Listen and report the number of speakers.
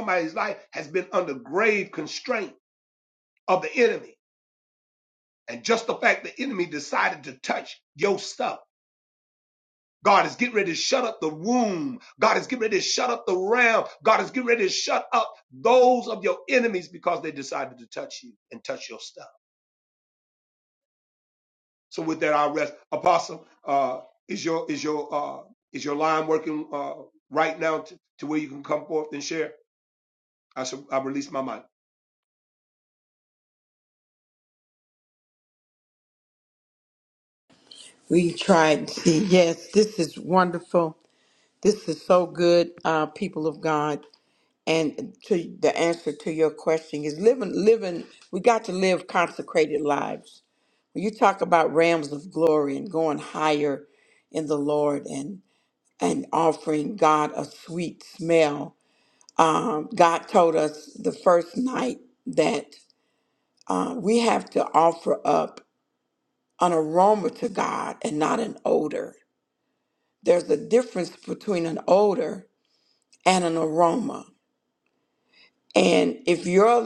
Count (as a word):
two